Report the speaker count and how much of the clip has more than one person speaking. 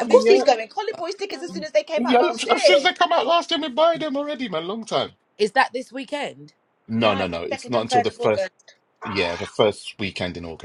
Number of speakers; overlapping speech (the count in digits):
3, about 25%